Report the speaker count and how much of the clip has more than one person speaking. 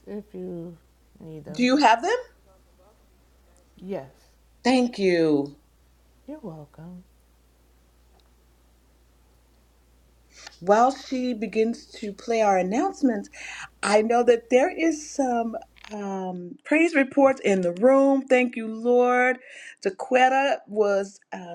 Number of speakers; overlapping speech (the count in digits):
2, under 1%